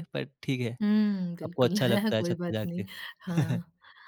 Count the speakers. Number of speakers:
2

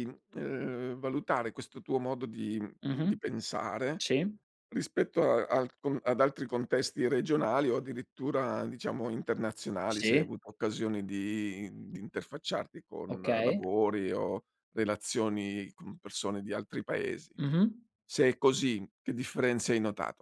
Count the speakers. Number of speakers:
2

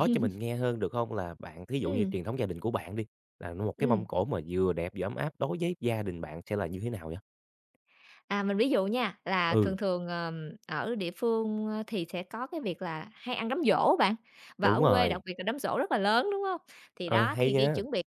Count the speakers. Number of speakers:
2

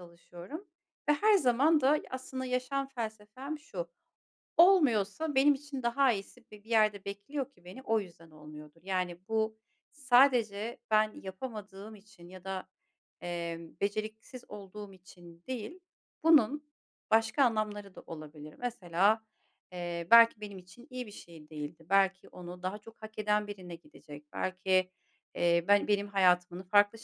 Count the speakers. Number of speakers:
1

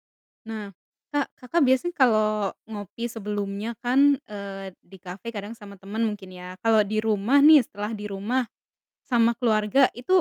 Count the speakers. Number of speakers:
1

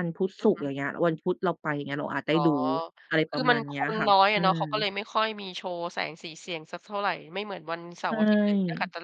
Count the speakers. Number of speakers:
2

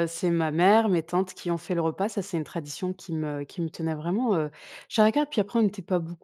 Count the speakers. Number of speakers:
1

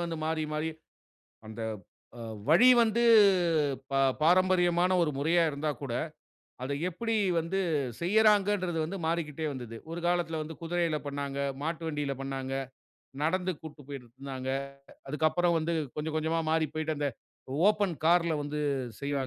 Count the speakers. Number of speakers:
1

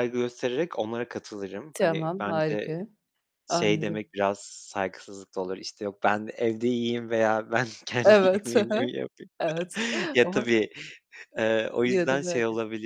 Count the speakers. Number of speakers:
2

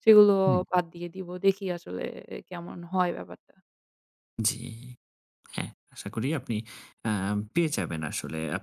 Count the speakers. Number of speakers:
2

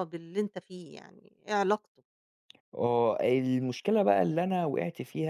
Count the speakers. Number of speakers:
2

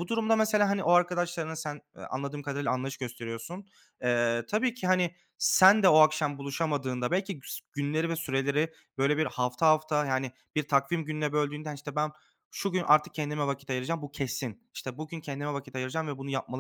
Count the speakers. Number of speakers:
1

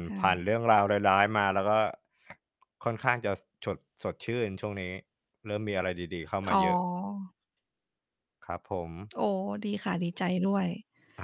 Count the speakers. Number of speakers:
2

